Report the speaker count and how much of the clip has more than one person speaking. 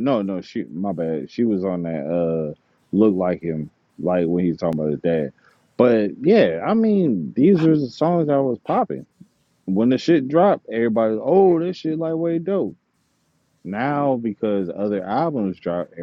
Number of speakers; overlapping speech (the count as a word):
one, no overlap